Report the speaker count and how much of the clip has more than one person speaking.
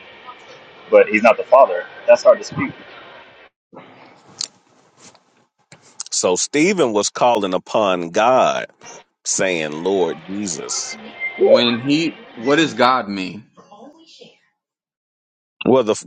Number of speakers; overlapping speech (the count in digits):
3, about 3%